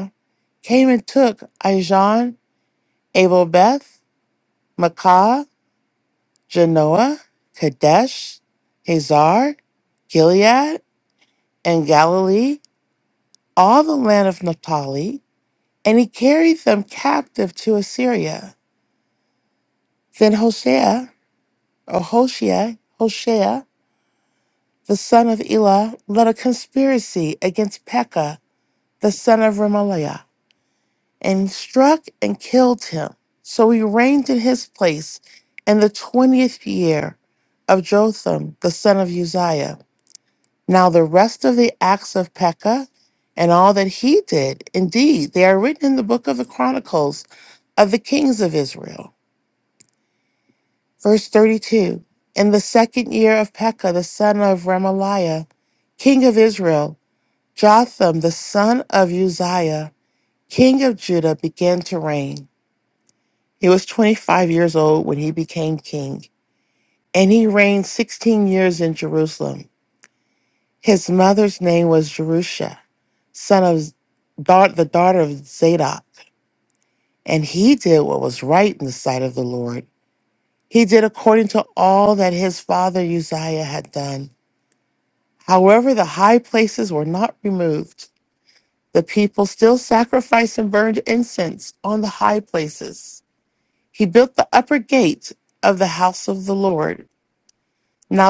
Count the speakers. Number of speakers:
one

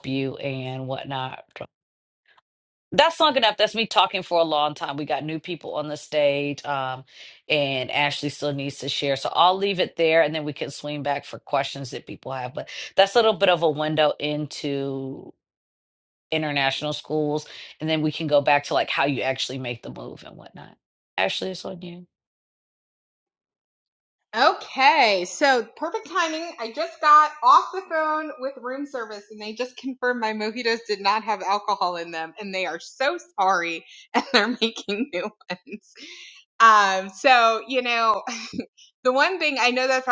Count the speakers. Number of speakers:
two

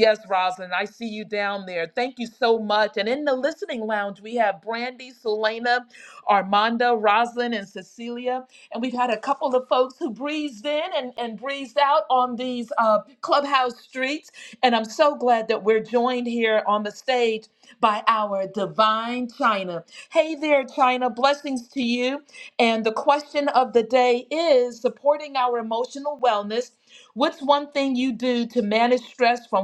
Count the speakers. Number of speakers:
one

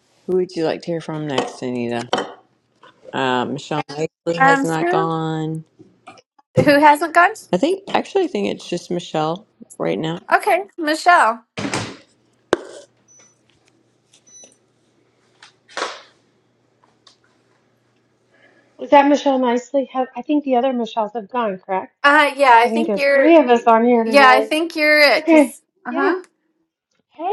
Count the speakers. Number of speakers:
three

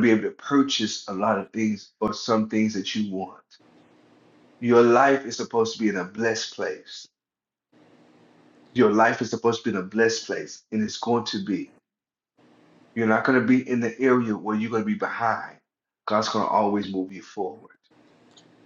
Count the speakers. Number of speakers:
one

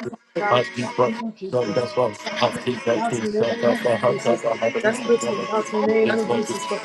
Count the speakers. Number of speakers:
two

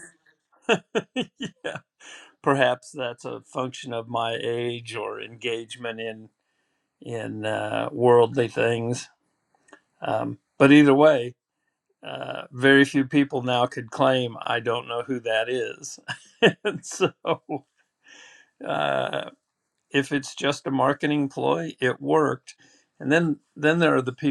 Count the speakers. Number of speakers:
one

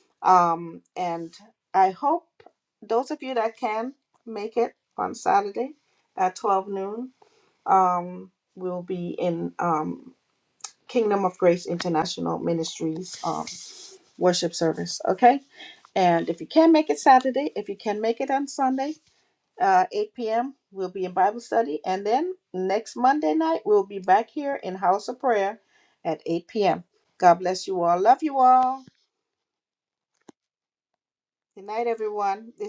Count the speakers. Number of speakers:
one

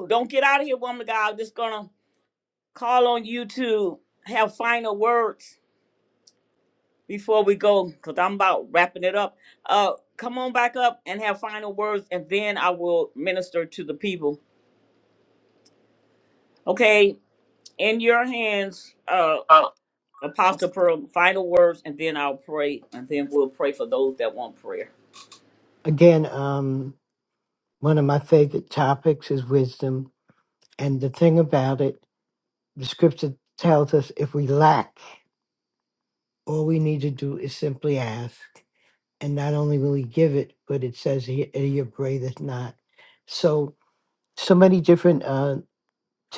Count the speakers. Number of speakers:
two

